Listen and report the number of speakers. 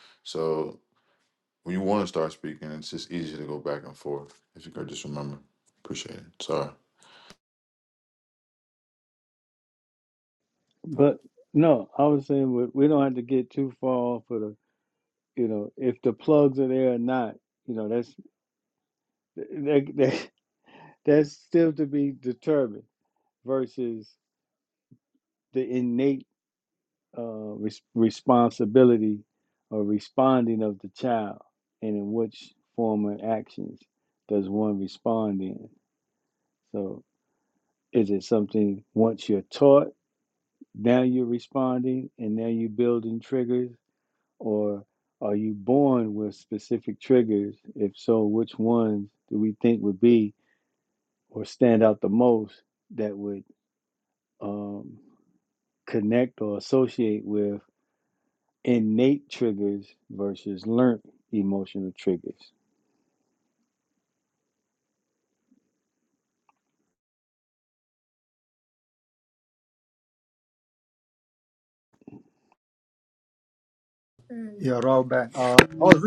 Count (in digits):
3